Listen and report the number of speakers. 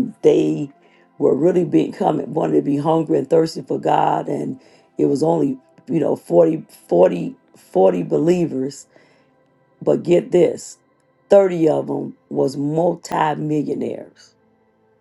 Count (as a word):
one